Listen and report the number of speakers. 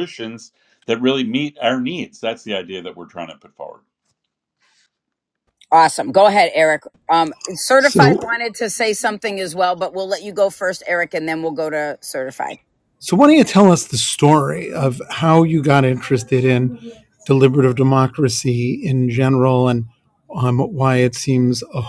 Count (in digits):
3